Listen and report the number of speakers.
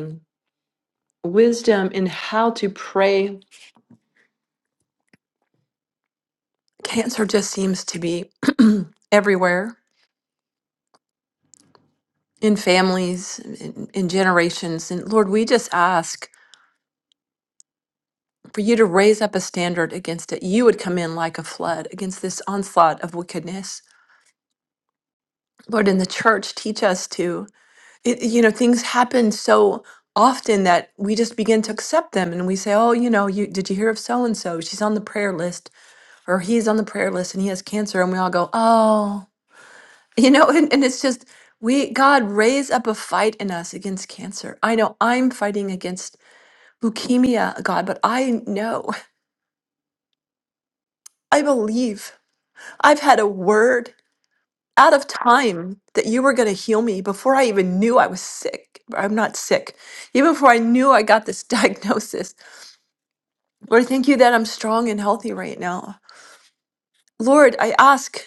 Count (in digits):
1